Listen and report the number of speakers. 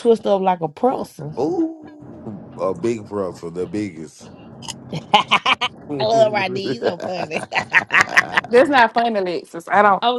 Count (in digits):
3